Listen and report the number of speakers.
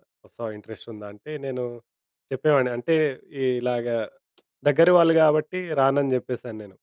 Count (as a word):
one